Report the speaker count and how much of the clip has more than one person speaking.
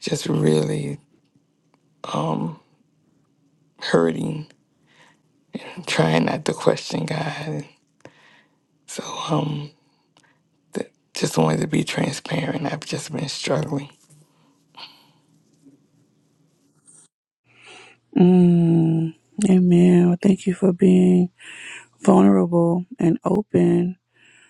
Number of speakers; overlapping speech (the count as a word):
two, no overlap